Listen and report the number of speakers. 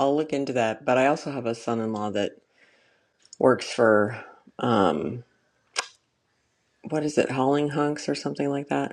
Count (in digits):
1